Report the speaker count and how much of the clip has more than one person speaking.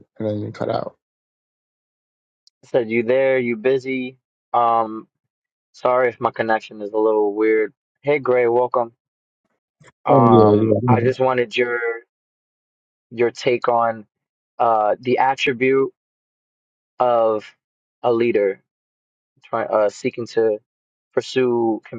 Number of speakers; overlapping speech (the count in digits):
2, about 5%